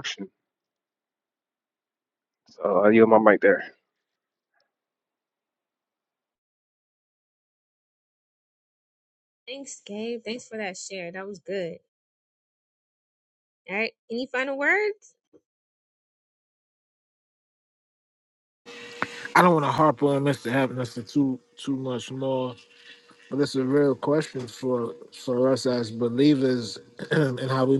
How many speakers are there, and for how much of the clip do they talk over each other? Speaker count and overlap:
3, no overlap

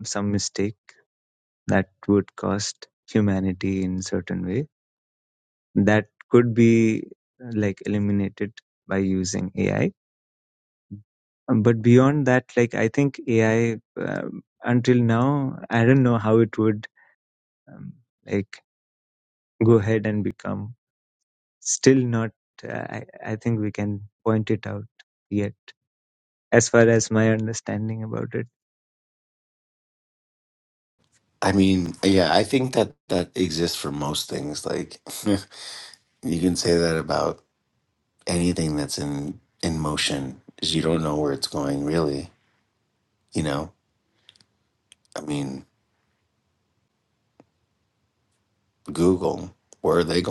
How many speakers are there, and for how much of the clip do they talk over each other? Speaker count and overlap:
2, no overlap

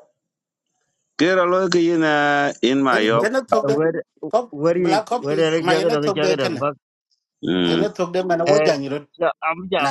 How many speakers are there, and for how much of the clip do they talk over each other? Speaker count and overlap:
3, about 27%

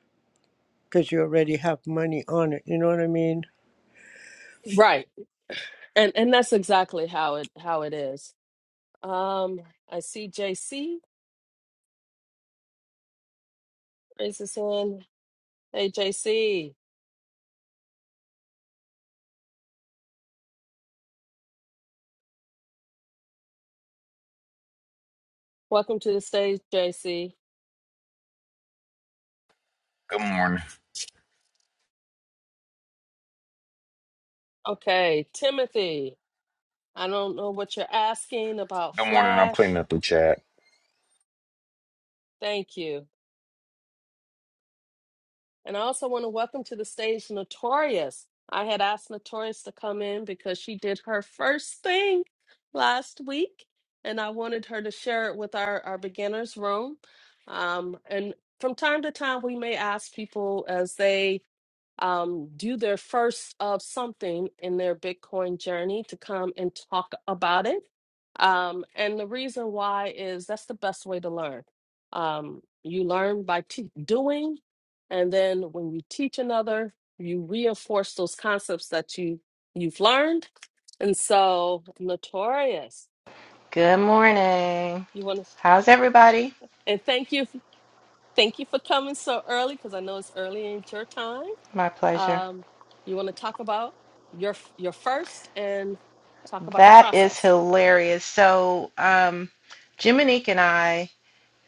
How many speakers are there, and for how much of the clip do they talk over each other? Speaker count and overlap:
4, about 2%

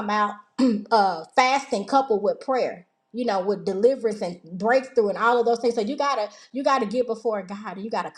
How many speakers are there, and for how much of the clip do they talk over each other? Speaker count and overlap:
1, no overlap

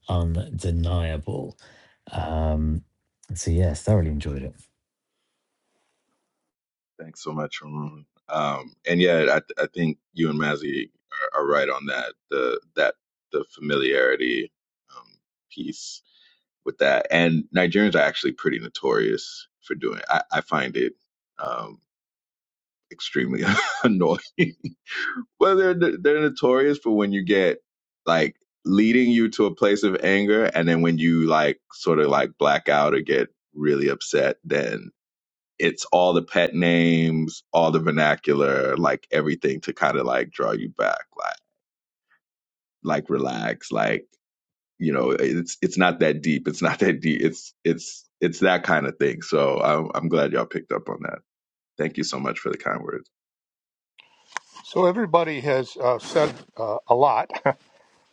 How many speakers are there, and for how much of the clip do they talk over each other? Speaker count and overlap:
3, no overlap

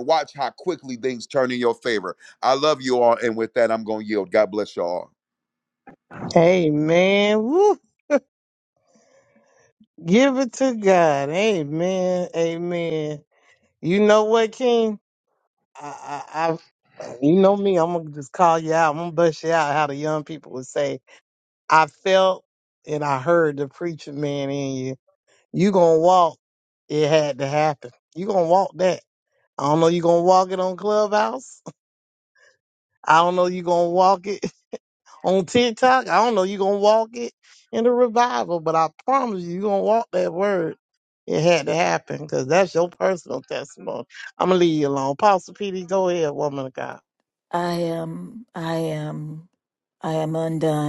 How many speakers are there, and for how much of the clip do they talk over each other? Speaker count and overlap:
3, no overlap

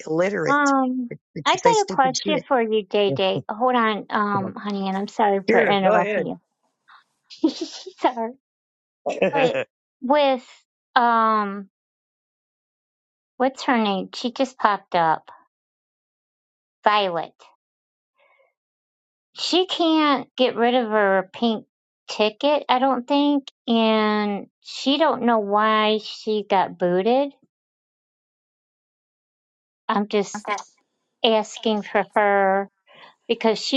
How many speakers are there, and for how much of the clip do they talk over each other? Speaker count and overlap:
2, about 6%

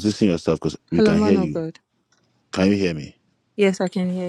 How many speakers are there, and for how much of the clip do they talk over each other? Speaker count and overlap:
2, about 14%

